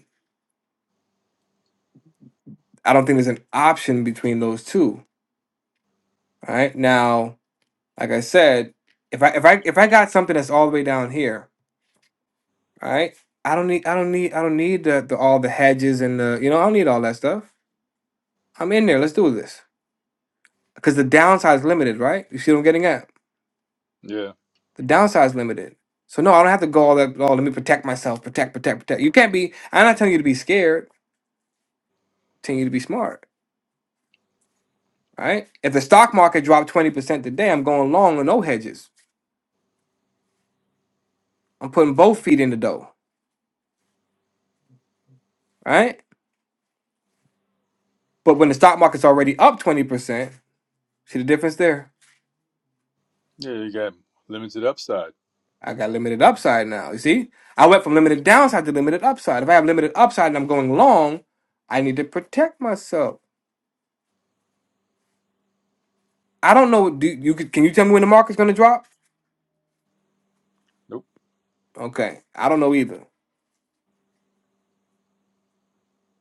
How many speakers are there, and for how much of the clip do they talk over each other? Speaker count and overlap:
two, no overlap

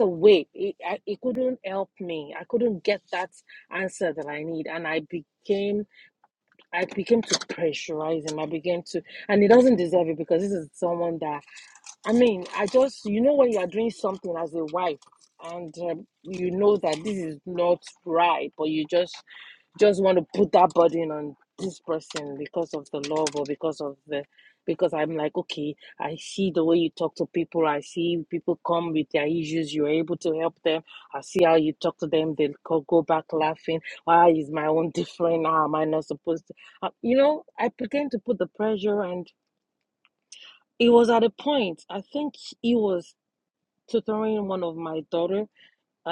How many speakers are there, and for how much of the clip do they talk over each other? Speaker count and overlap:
one, no overlap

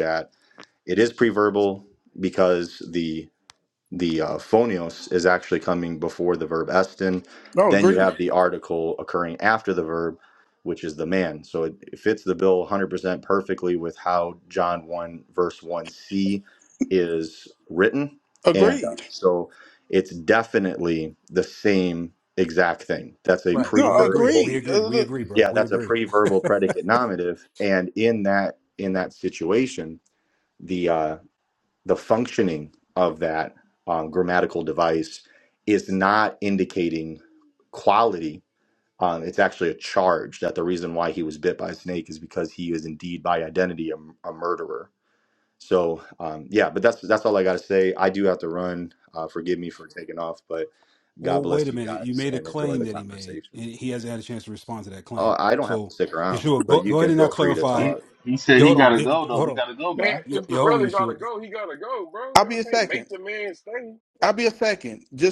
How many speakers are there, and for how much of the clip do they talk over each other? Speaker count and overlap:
five, about 16%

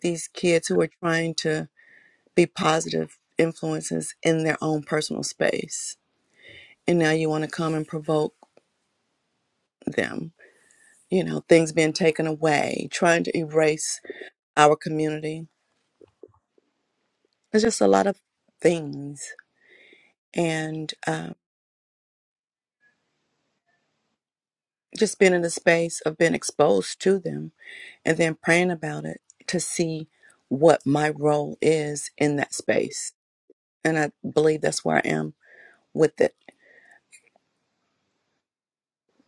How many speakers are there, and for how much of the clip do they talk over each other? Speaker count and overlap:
one, no overlap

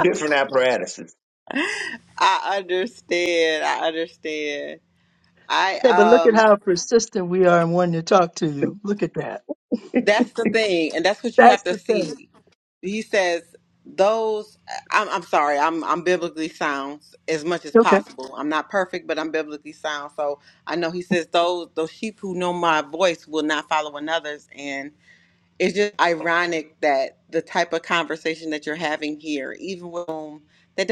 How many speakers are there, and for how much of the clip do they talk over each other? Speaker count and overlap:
three, about 6%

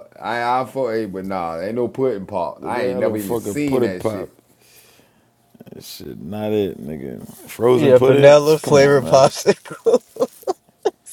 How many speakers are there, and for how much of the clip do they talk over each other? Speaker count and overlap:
three, about 29%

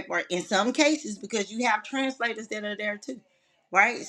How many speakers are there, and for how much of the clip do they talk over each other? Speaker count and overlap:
one, no overlap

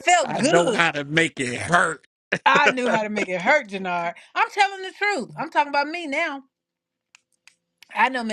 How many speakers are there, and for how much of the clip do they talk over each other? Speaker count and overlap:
two, about 7%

